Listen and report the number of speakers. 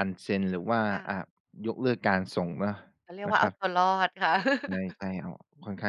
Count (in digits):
2